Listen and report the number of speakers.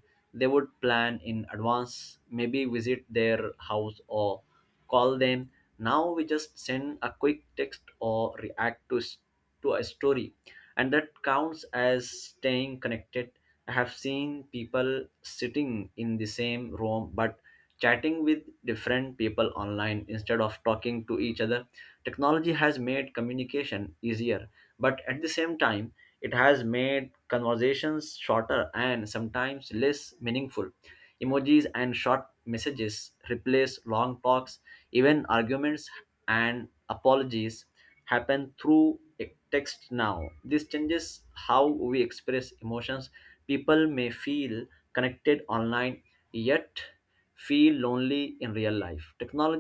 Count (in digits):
1